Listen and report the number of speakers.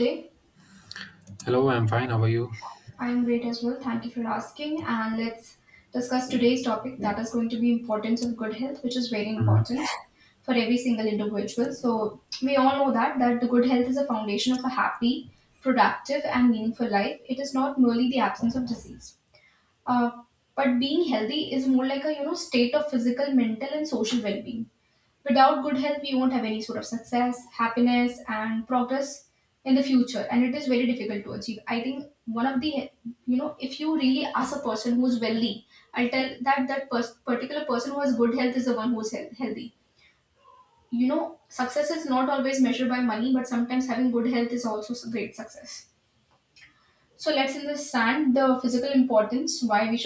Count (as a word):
two